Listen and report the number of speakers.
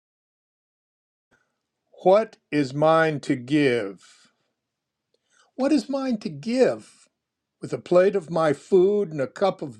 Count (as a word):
one